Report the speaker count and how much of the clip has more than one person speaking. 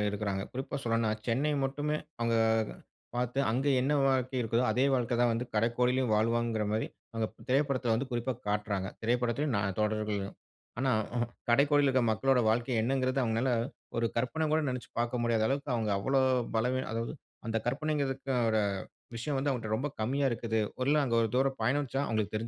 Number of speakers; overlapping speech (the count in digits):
1, no overlap